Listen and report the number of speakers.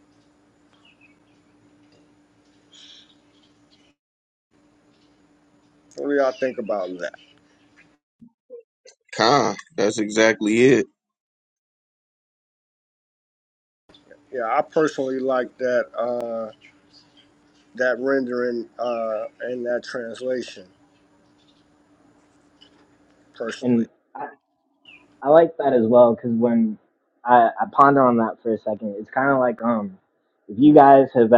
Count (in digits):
3